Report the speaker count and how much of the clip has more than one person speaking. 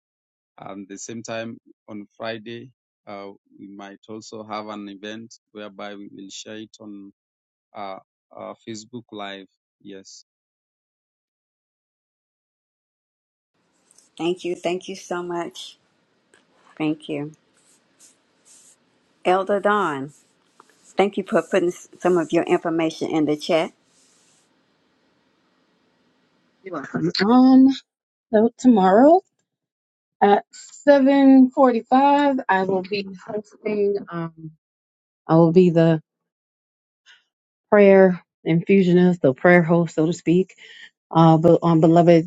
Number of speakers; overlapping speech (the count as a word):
three, no overlap